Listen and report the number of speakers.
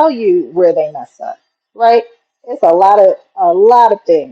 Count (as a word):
one